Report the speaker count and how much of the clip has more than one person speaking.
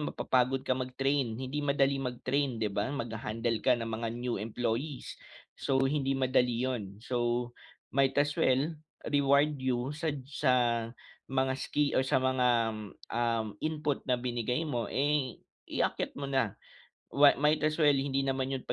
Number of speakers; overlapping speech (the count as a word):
one, no overlap